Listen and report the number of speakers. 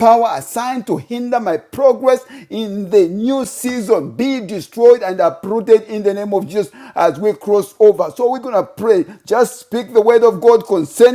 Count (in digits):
1